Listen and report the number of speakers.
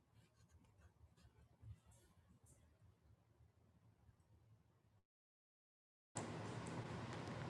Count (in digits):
0